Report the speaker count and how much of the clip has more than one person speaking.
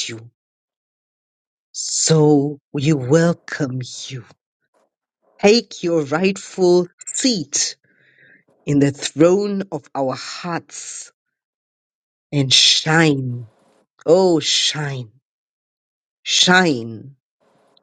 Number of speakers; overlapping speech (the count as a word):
one, no overlap